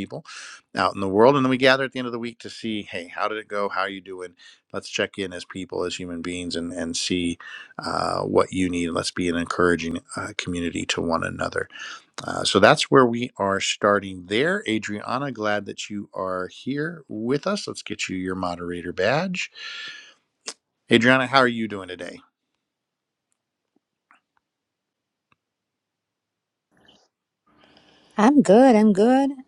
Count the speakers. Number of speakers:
two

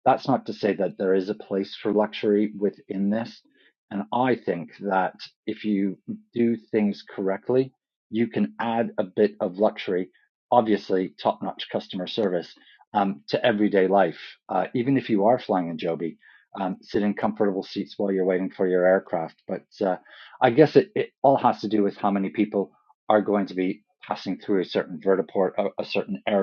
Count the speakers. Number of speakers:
one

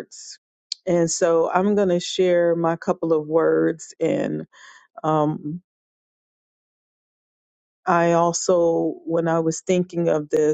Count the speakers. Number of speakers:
one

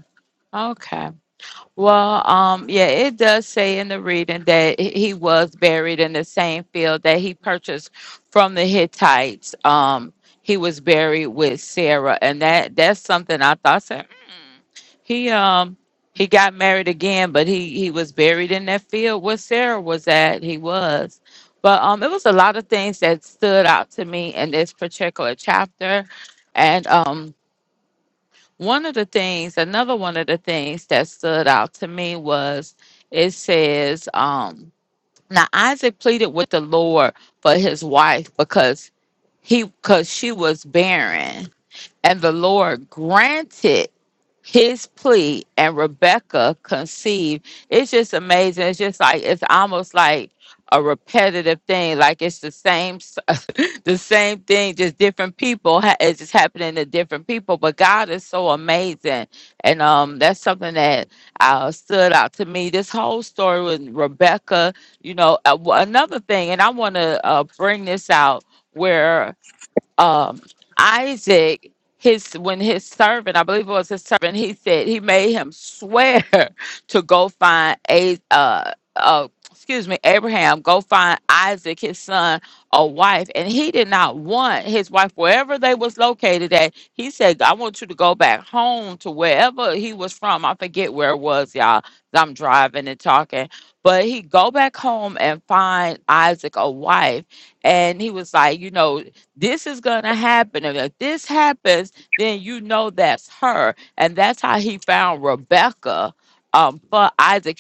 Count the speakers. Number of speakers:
one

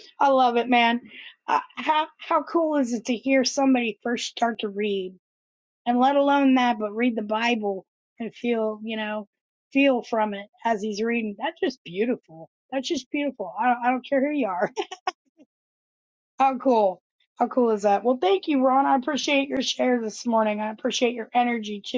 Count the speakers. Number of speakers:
one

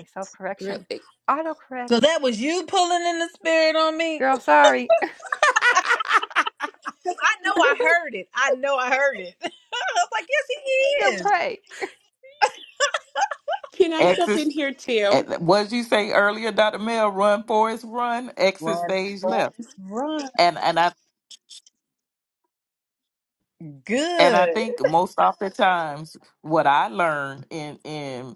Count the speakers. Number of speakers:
four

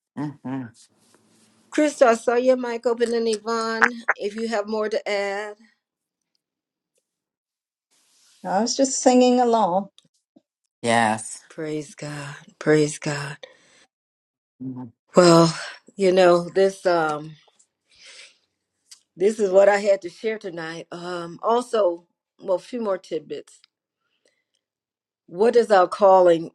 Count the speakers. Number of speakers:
three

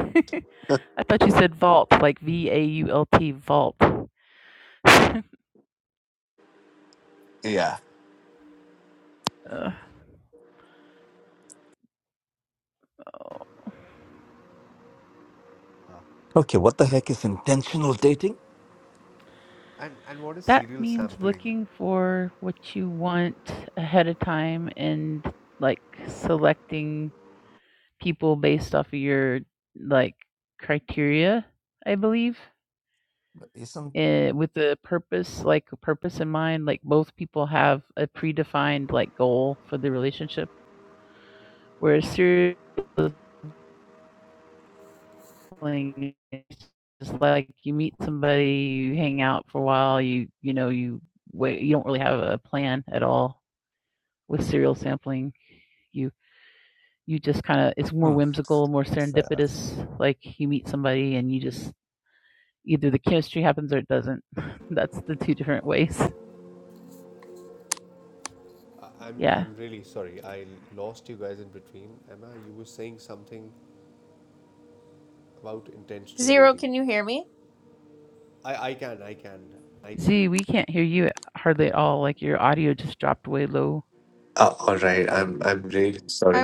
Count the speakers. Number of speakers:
four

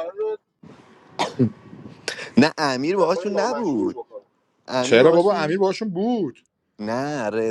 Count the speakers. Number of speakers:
three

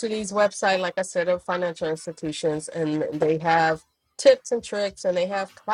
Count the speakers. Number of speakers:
one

